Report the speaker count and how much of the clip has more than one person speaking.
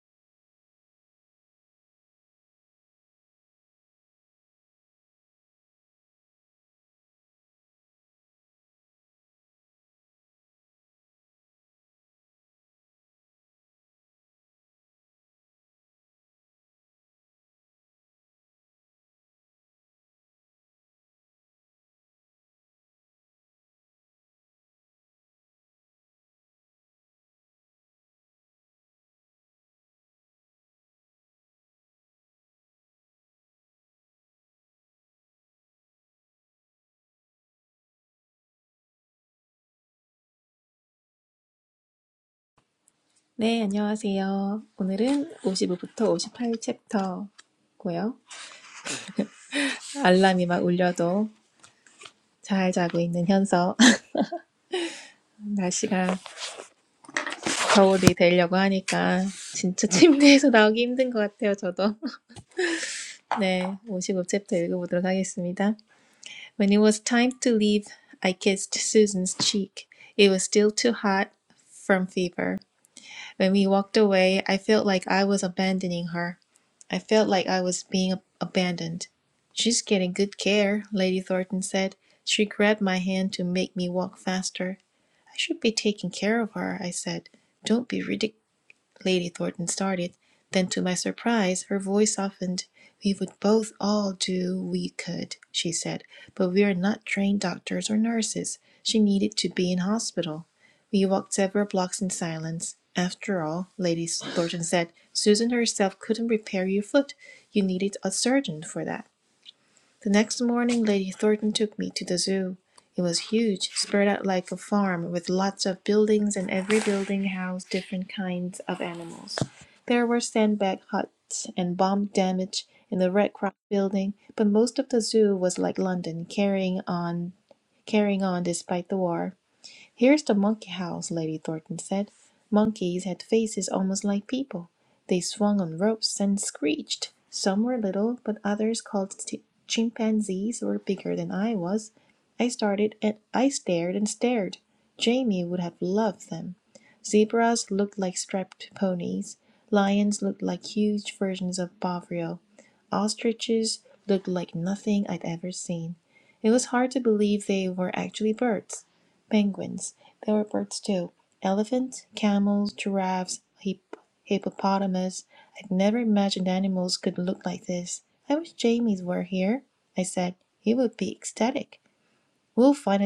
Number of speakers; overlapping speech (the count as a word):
one, no overlap